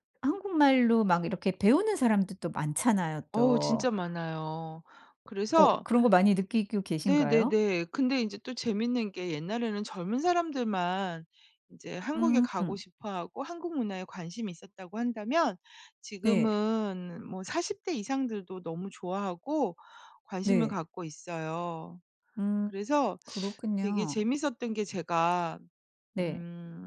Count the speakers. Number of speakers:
two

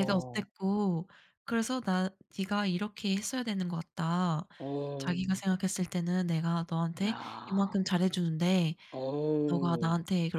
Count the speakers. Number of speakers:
two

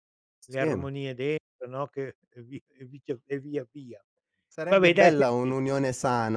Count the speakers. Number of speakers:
two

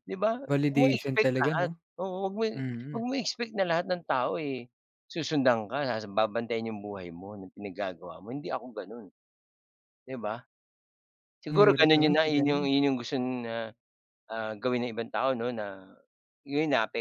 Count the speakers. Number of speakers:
two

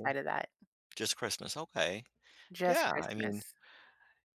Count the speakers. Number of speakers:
two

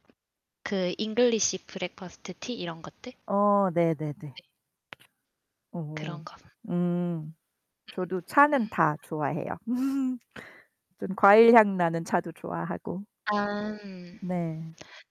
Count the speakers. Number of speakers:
two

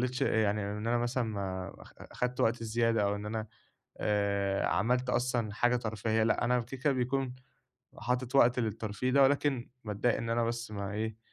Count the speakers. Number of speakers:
one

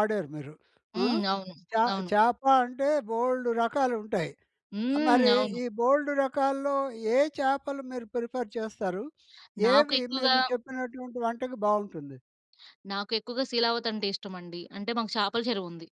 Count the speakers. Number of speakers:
two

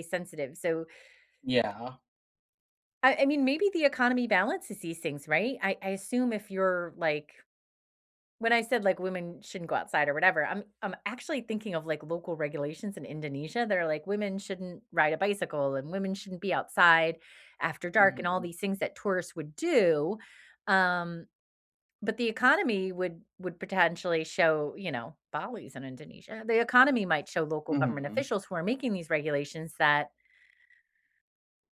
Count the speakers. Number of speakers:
two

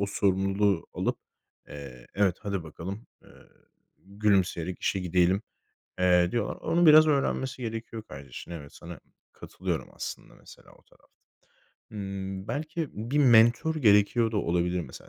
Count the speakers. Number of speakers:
one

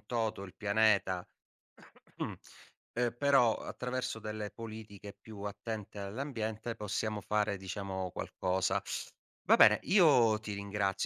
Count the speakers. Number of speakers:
one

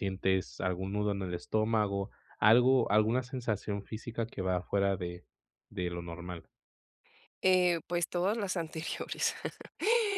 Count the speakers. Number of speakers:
two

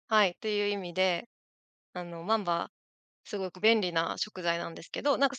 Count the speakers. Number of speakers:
one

